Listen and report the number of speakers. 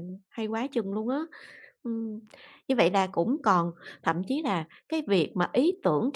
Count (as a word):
one